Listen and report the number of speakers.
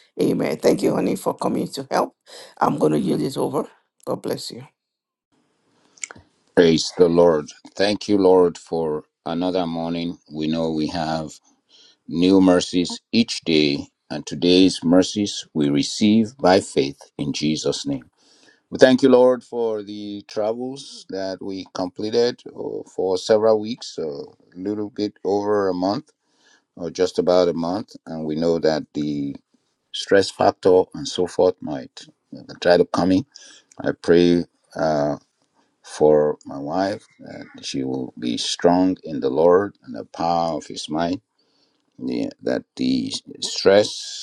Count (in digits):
2